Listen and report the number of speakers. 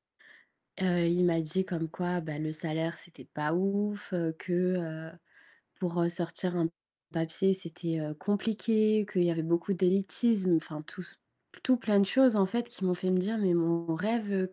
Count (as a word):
one